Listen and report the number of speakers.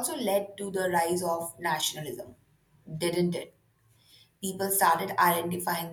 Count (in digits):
1